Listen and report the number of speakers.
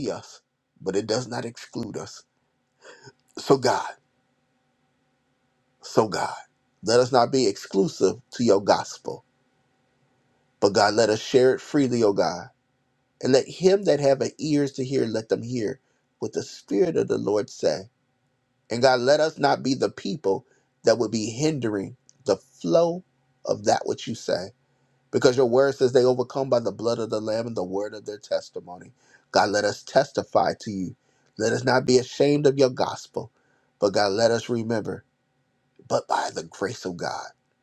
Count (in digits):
1